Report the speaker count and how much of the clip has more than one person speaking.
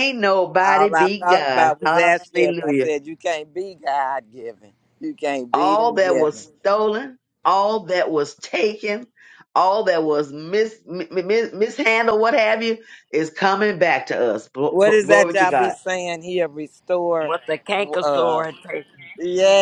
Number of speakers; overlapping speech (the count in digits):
3, about 24%